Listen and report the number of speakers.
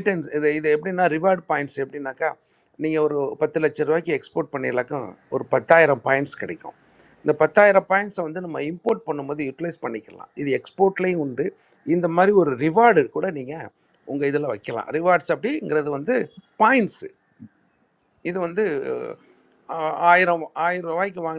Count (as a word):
one